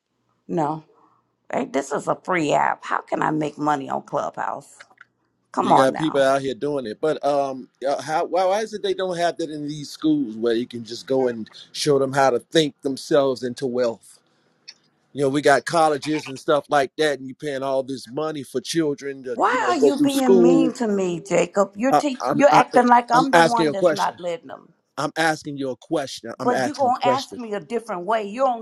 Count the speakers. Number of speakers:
two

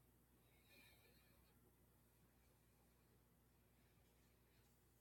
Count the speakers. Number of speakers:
zero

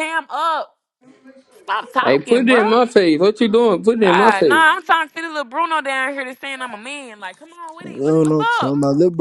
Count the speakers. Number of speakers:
three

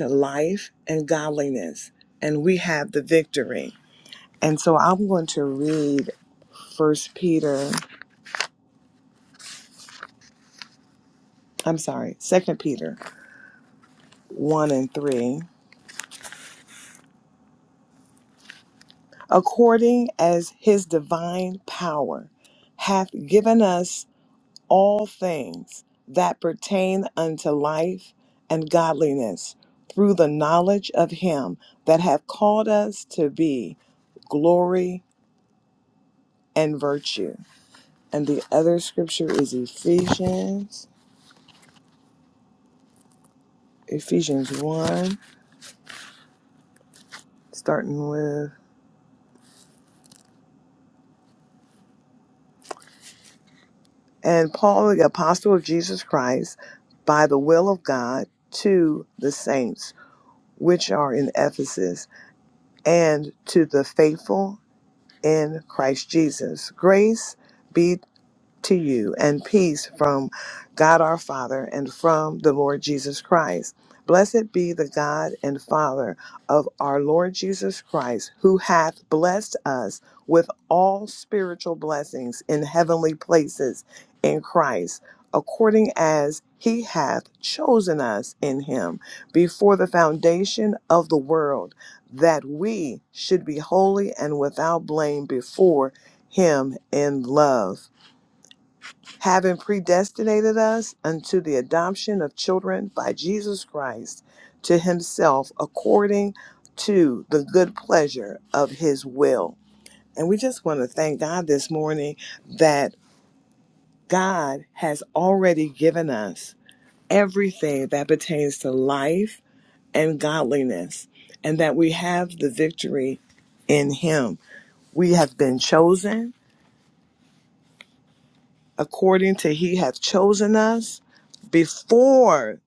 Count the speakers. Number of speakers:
one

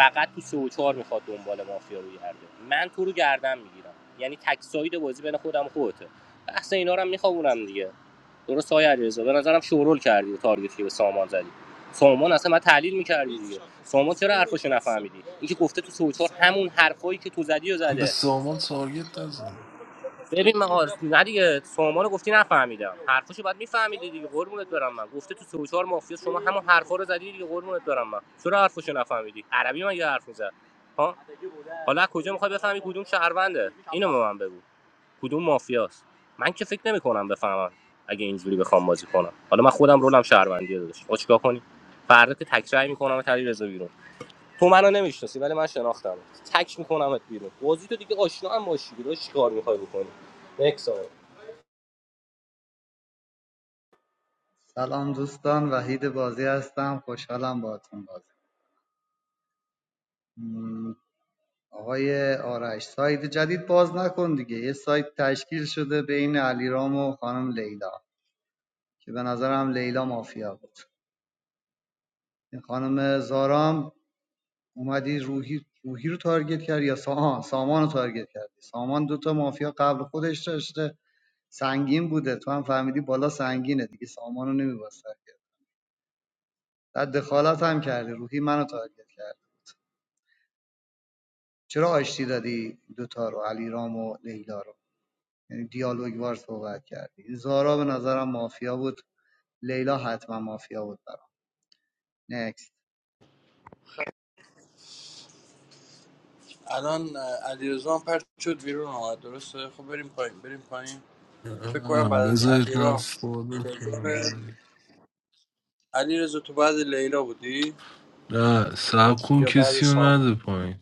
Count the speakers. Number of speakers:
four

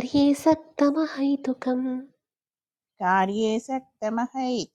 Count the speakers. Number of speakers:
two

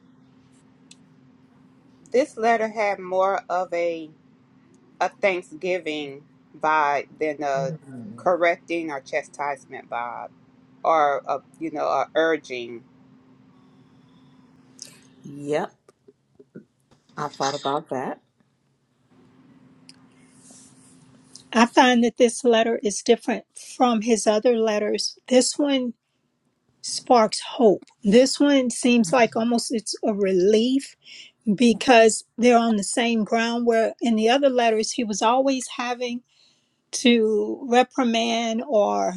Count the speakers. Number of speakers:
three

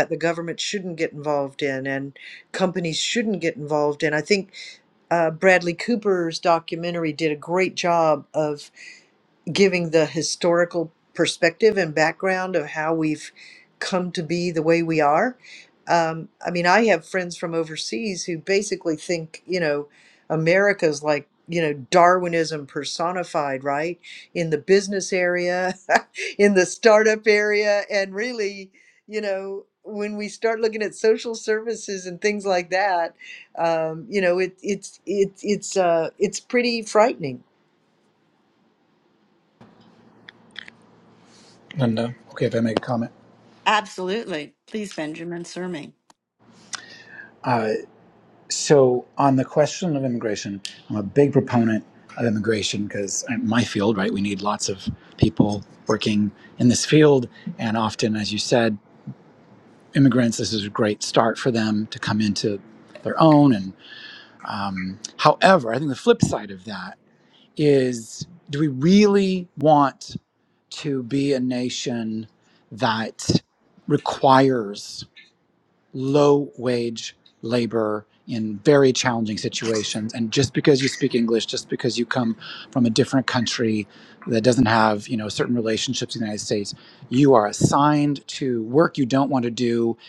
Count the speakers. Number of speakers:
three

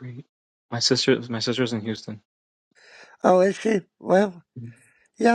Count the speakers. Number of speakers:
two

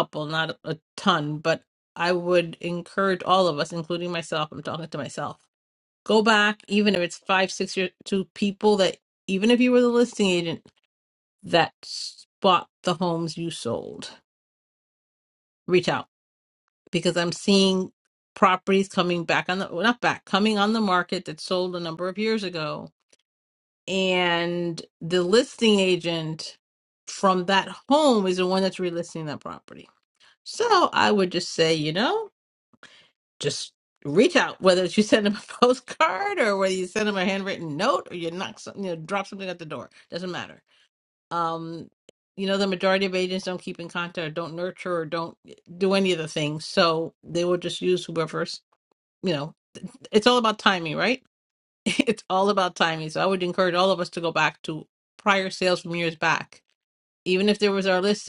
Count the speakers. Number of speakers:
one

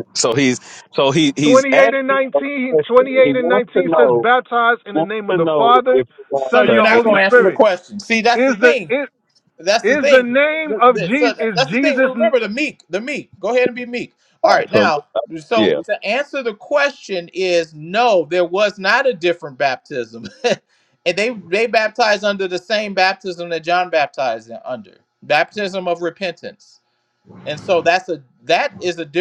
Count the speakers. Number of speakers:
three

